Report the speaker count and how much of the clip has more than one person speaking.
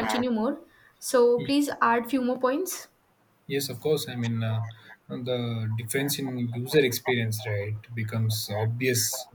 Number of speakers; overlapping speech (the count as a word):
two, about 1%